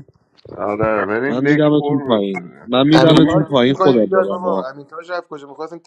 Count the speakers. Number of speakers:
three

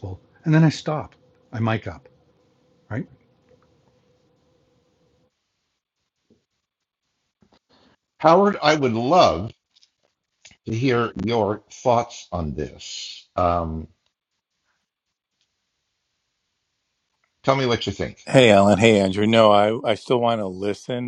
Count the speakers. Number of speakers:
three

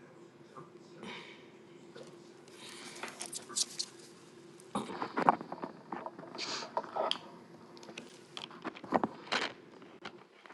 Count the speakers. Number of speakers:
zero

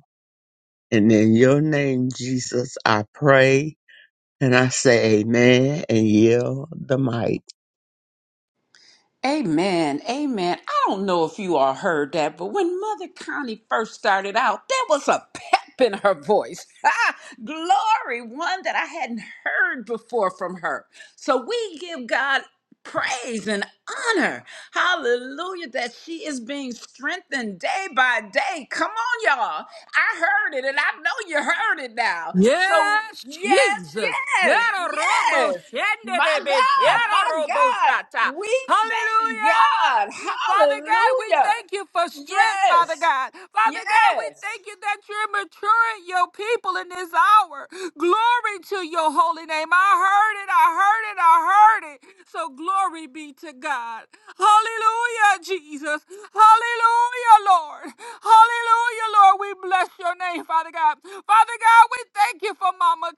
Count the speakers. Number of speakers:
three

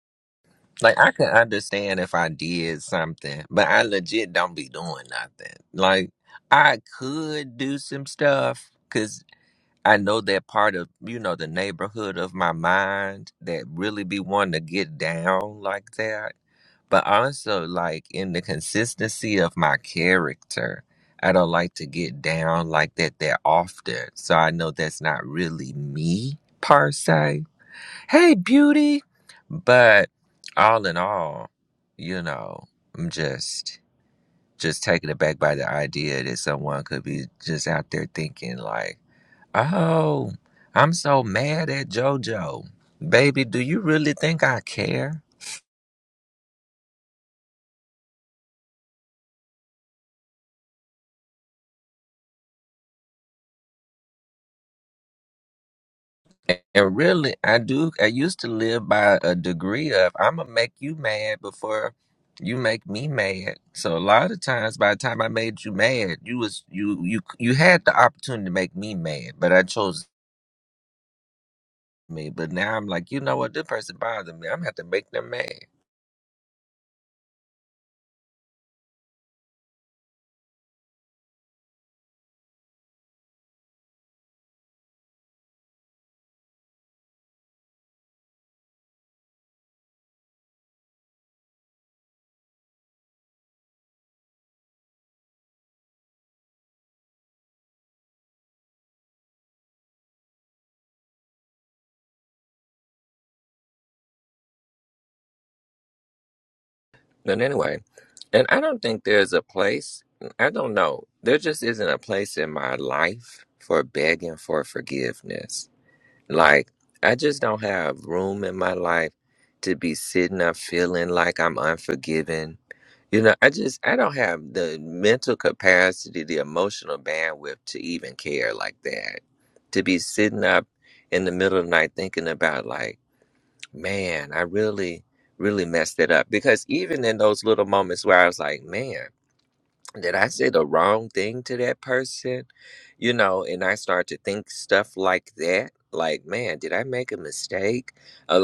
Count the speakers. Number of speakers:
one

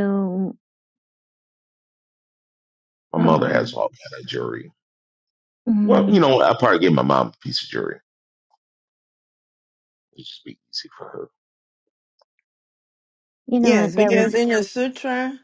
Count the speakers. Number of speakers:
three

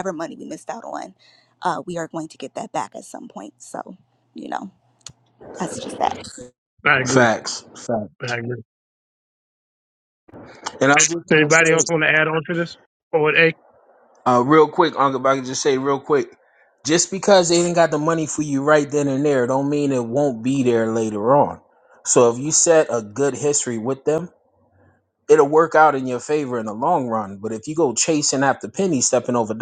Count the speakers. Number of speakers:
three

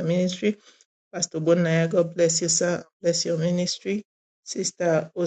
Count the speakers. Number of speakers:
one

